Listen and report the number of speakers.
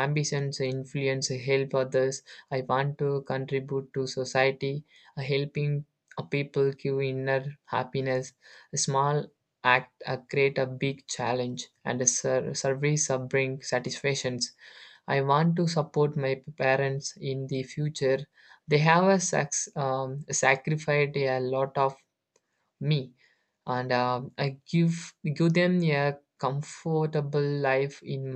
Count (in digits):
1